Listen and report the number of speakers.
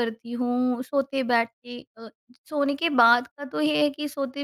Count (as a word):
one